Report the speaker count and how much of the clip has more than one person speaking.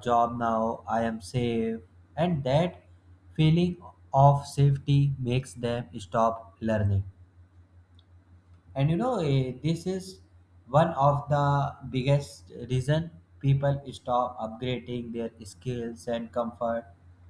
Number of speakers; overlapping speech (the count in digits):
1, no overlap